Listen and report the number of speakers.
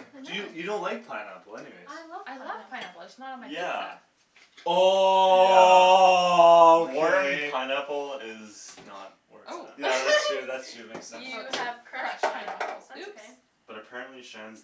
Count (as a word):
four